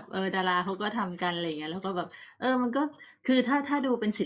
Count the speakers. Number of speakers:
1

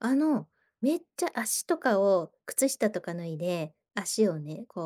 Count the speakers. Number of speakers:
1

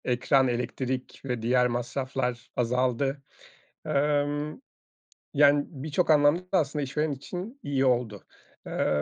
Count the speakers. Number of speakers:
1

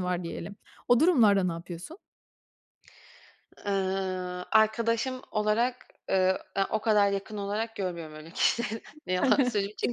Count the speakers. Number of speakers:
2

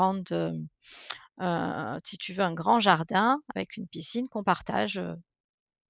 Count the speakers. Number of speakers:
1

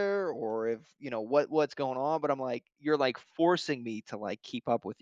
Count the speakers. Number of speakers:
1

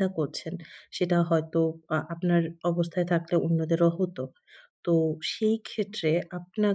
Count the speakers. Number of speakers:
1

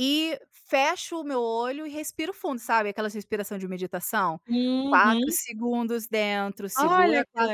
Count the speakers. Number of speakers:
2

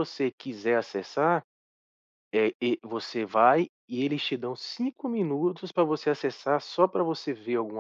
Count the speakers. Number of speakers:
1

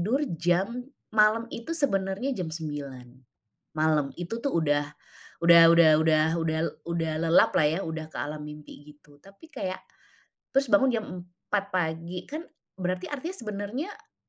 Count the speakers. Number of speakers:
1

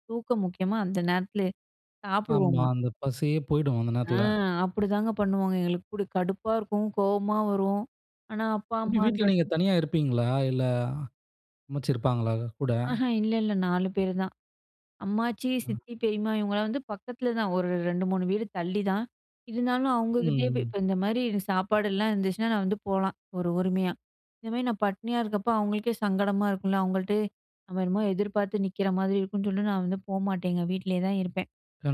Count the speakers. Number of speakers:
2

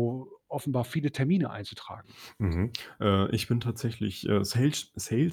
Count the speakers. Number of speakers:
2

